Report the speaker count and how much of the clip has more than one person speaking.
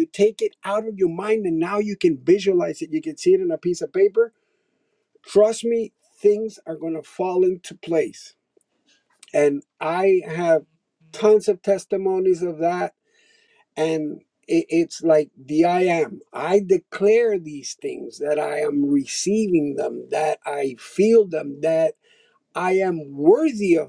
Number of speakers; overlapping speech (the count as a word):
one, no overlap